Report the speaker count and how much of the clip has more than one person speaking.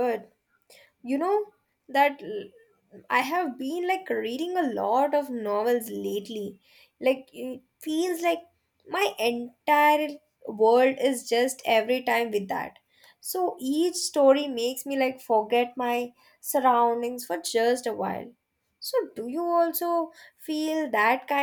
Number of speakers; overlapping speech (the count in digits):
1, no overlap